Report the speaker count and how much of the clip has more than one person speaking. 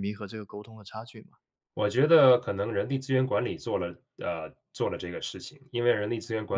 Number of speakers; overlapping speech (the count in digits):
2, about 1%